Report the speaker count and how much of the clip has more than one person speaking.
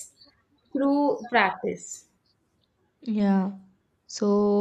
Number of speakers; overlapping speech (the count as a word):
two, no overlap